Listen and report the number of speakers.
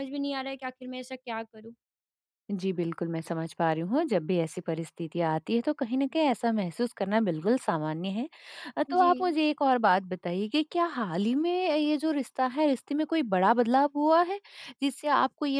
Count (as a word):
two